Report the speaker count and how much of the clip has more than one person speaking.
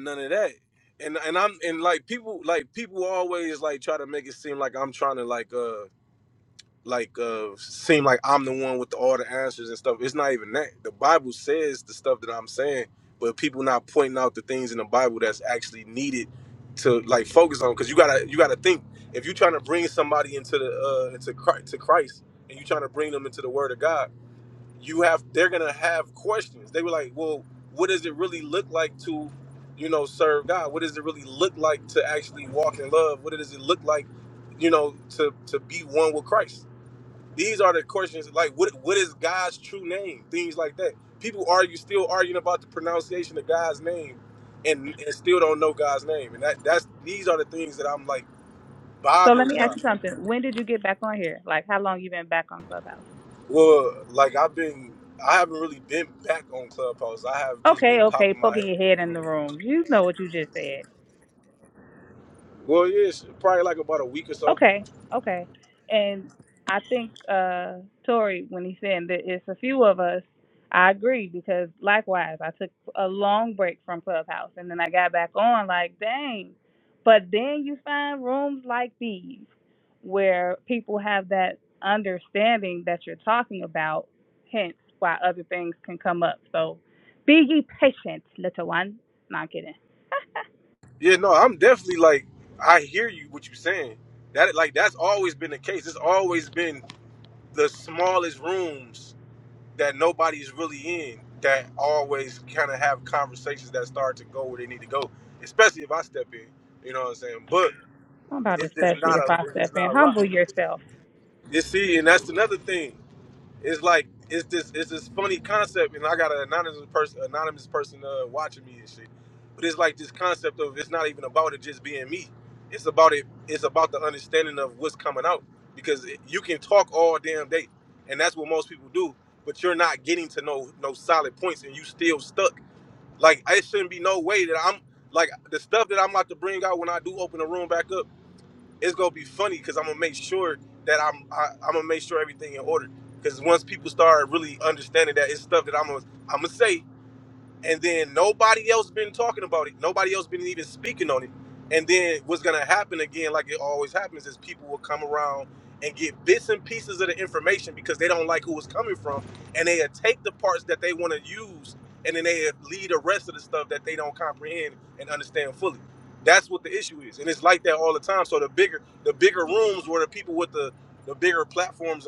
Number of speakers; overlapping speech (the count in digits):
2, about 2%